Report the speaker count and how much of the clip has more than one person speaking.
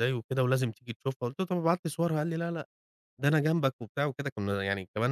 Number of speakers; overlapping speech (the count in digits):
1, no overlap